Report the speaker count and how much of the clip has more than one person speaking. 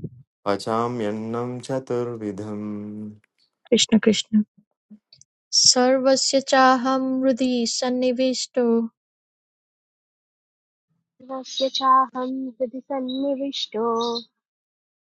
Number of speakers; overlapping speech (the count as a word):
three, no overlap